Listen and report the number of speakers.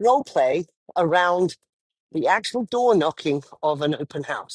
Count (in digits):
1